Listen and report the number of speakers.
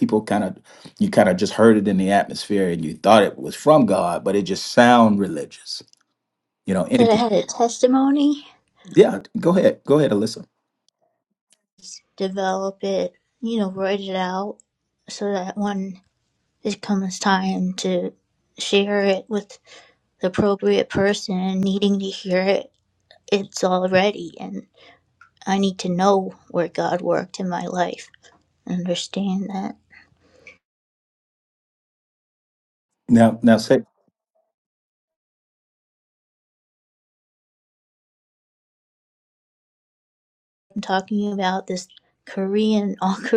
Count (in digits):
2